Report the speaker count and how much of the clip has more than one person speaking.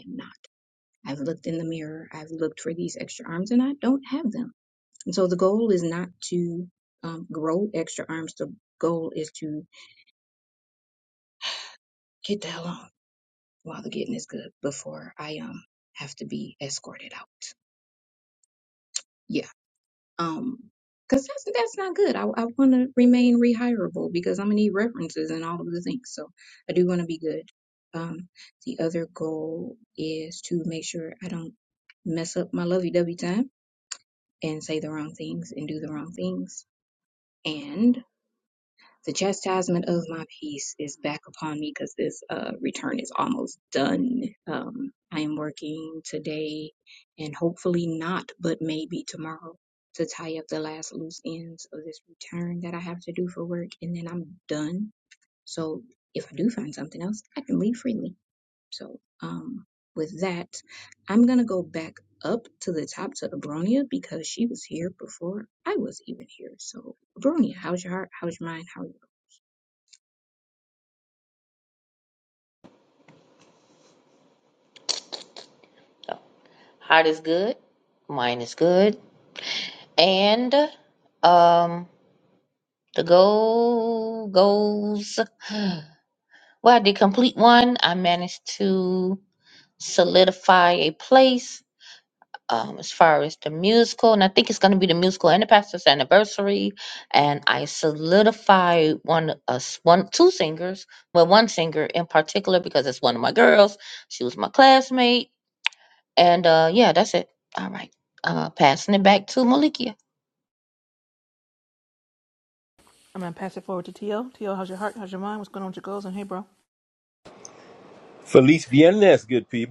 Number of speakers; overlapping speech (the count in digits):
4, no overlap